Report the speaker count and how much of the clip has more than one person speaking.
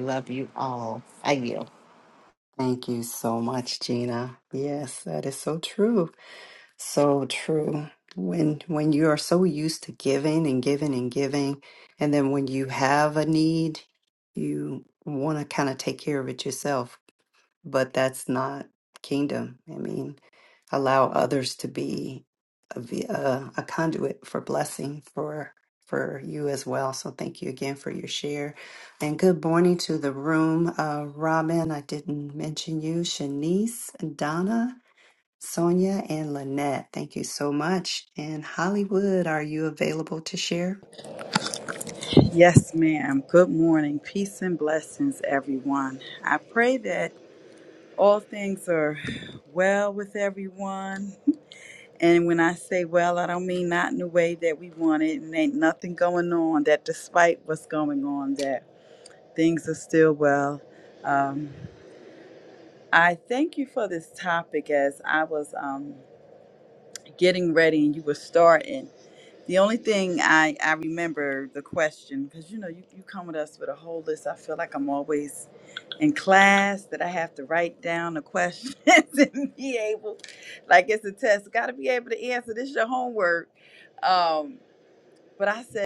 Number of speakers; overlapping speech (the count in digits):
3, no overlap